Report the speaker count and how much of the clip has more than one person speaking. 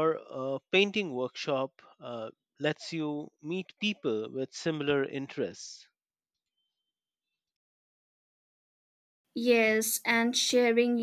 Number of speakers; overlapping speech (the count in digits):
2, no overlap